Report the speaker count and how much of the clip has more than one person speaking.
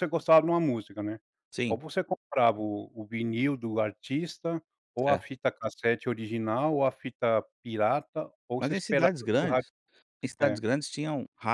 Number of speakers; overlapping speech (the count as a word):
two, about 12%